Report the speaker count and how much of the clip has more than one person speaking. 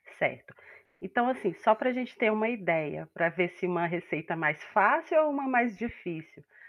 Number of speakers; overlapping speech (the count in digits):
1, no overlap